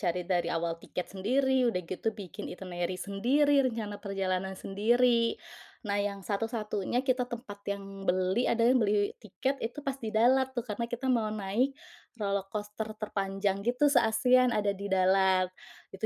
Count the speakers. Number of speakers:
1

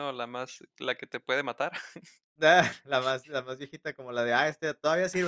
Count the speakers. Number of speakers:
2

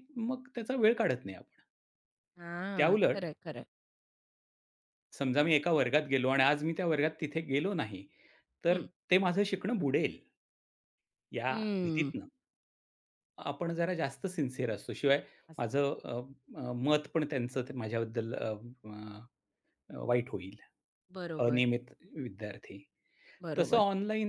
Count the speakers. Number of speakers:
2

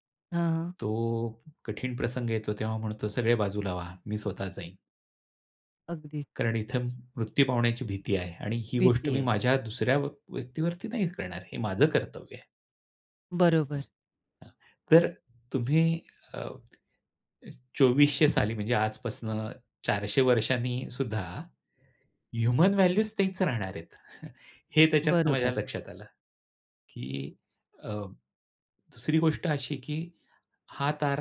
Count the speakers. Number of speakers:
2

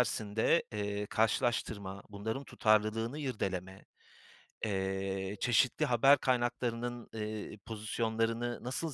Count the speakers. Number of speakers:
1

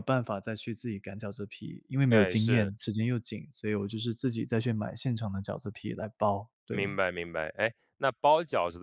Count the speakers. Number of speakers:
2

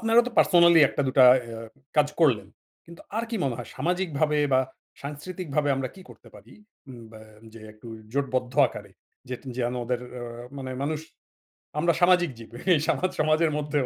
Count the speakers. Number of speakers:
1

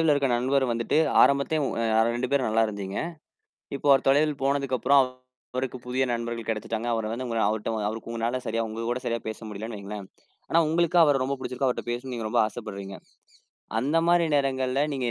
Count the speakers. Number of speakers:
1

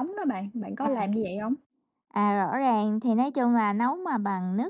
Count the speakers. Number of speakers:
2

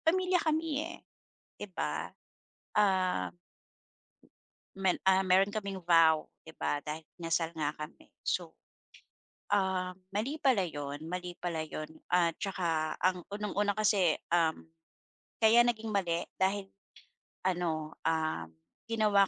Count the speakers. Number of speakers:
1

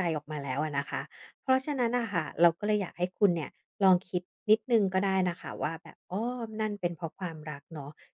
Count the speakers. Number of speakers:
1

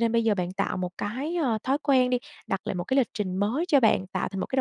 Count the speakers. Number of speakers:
1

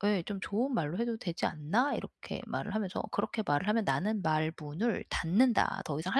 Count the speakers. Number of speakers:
1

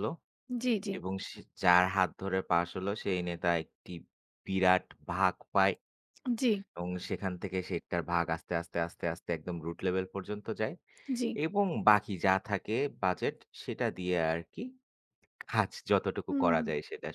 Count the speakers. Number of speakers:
2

